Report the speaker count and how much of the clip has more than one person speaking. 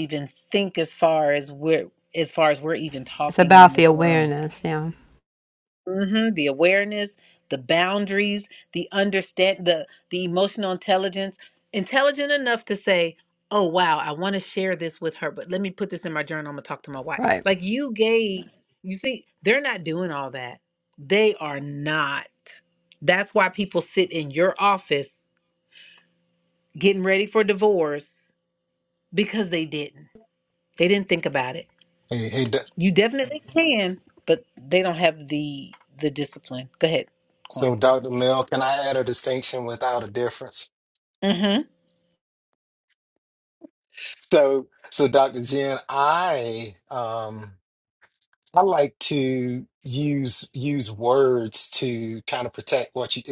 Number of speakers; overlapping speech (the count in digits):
3, about 2%